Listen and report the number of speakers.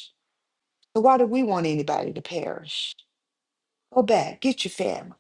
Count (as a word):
one